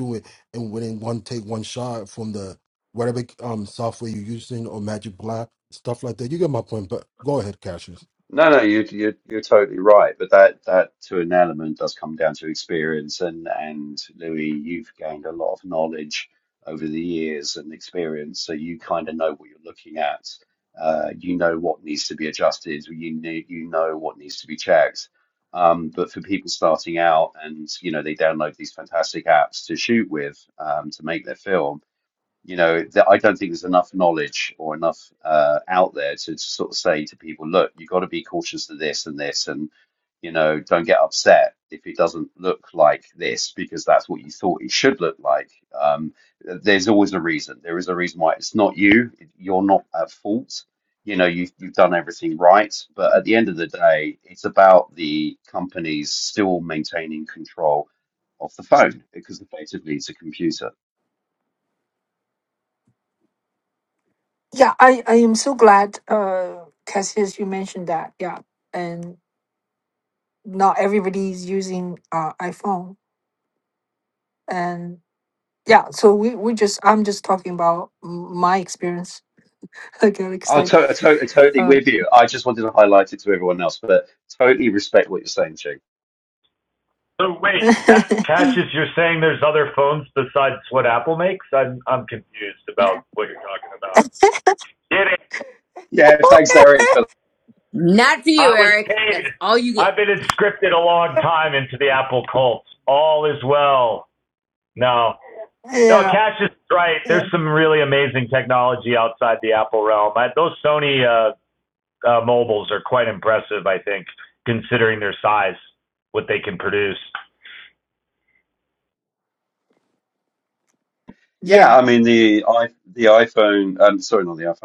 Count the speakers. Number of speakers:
five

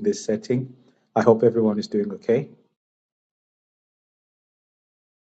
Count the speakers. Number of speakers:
one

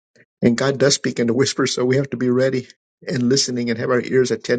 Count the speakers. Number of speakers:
one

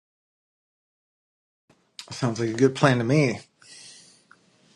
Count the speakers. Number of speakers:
one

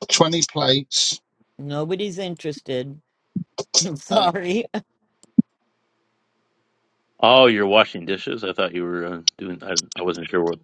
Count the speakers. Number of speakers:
three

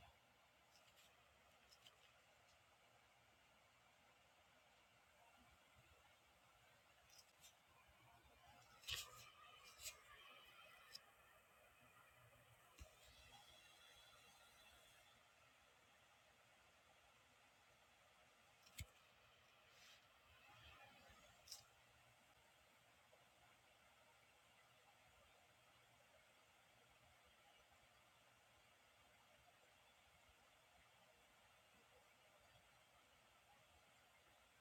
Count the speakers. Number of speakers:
zero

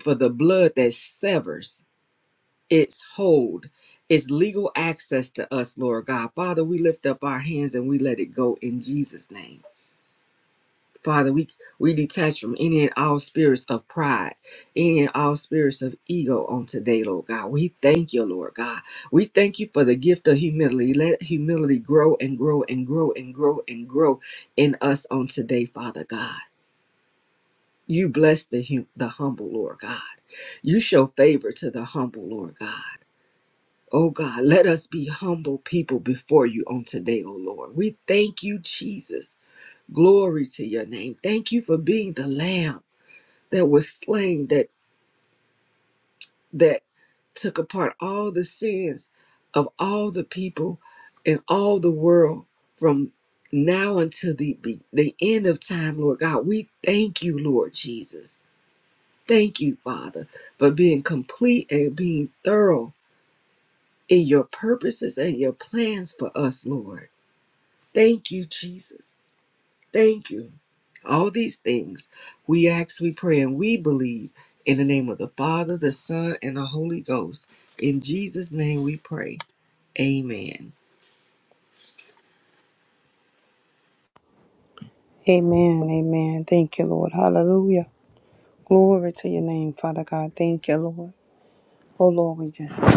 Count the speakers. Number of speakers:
two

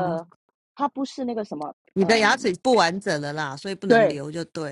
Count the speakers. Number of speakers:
two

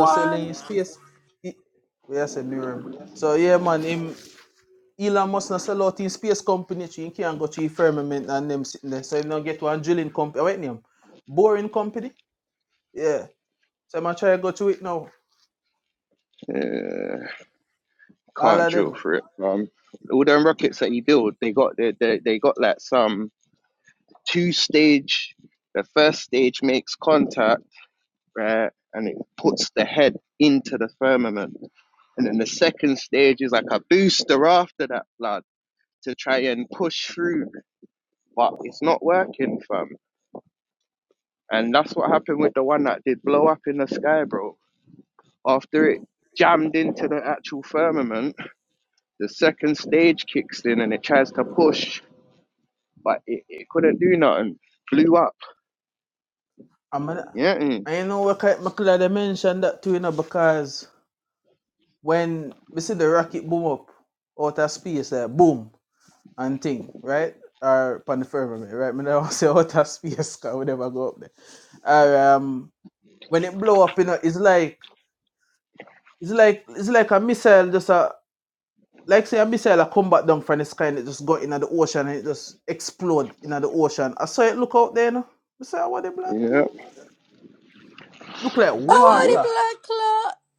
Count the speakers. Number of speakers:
three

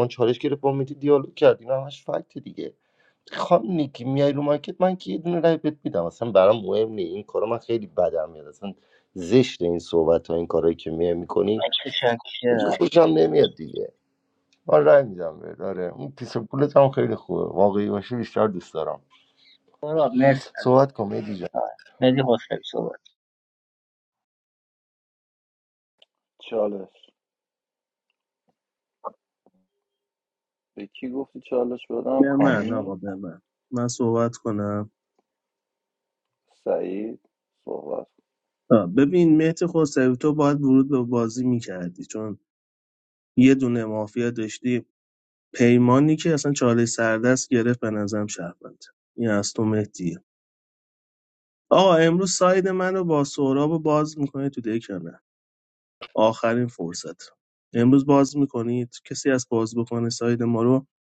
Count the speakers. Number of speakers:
four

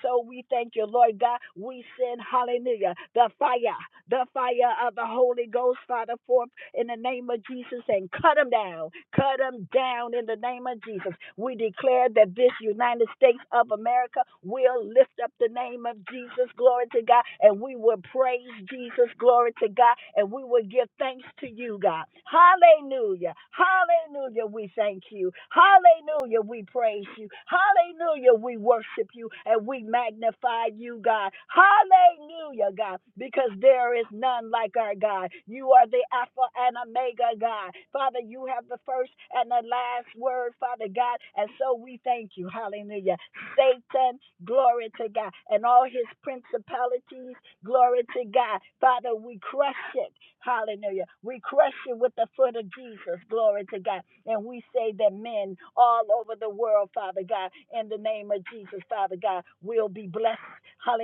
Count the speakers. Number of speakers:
one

